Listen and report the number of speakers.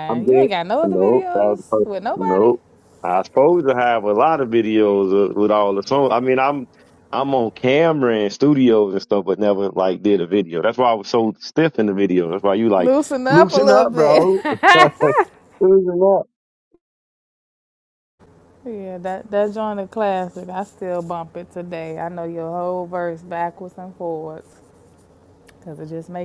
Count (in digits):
2